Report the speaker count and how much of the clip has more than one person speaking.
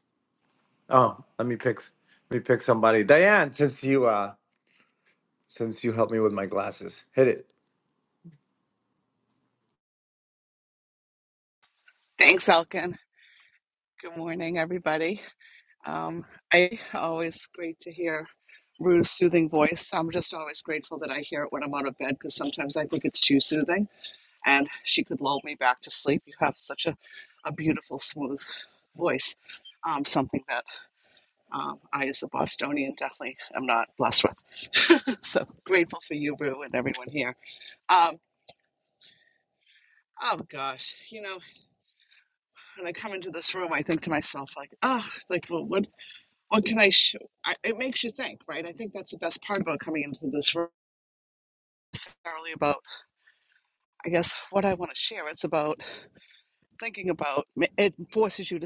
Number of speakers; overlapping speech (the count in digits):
2, no overlap